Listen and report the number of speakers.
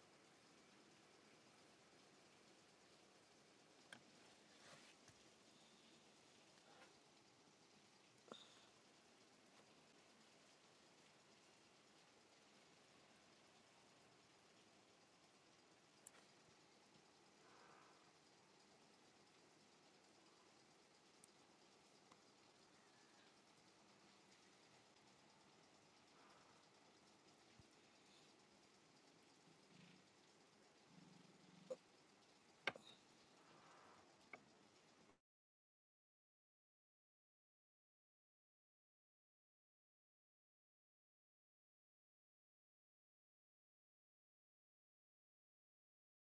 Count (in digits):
0